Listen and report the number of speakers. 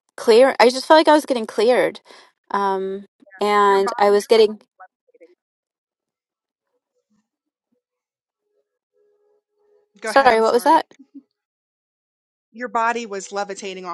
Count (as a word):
two